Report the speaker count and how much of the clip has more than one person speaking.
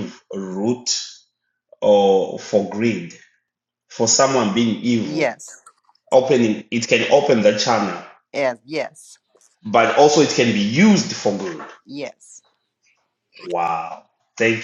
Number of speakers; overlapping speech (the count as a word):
two, about 2%